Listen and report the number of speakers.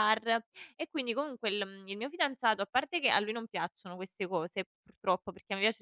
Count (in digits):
1